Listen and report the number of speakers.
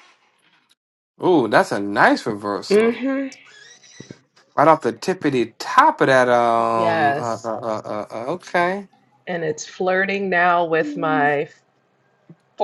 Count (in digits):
2